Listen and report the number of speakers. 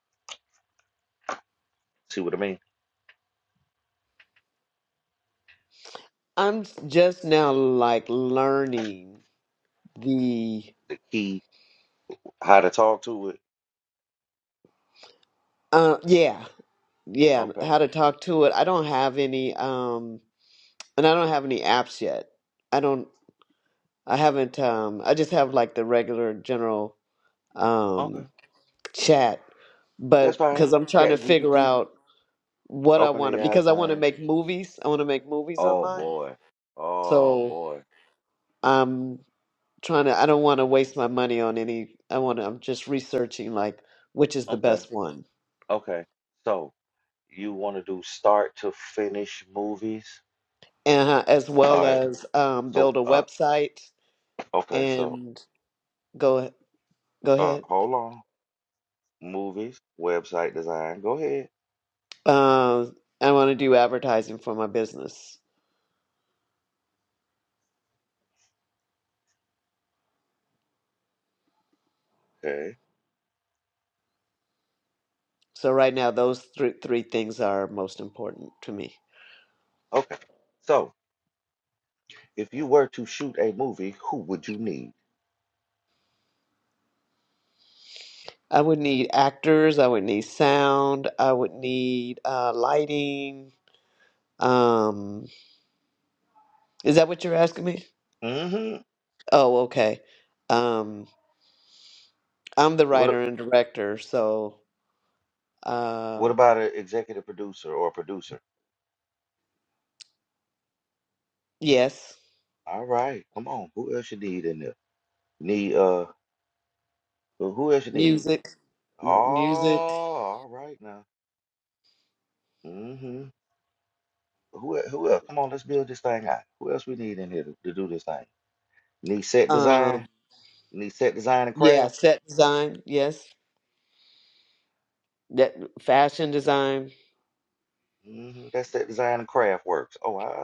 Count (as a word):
two